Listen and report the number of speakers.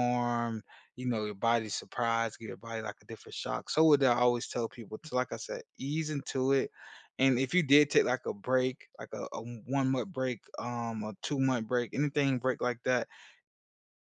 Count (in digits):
1